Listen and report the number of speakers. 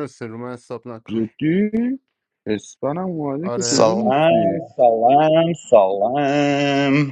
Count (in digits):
3